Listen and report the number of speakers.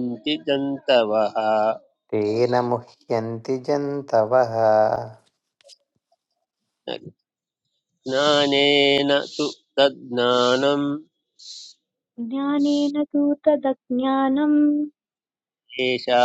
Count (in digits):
3